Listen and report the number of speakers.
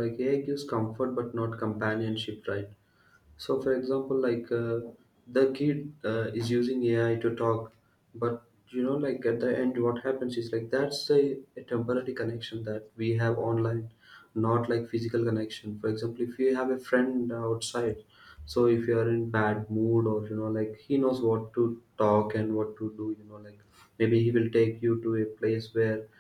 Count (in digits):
1